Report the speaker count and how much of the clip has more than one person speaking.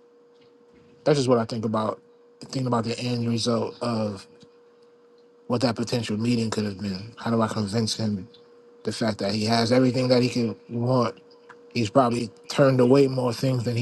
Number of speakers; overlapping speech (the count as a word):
one, no overlap